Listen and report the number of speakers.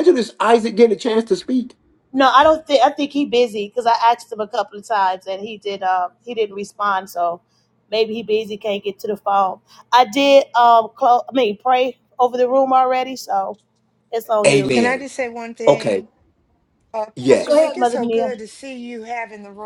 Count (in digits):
3